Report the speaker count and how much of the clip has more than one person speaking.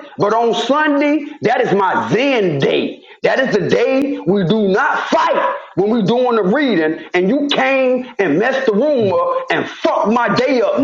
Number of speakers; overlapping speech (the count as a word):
one, no overlap